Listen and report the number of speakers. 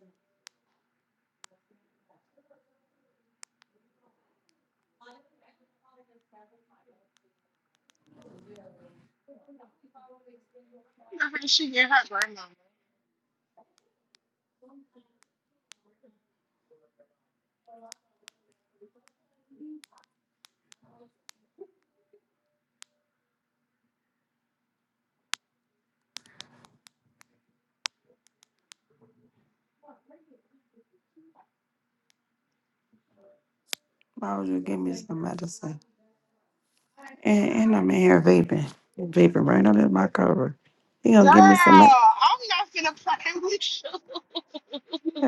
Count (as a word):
two